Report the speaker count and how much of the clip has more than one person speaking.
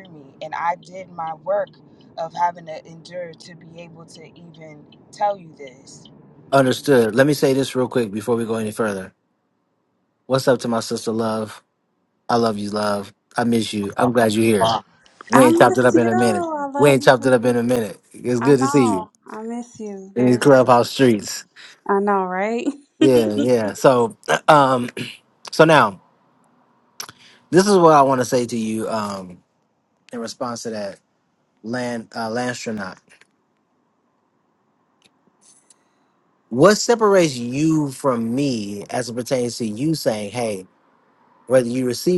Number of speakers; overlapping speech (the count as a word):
three, about 6%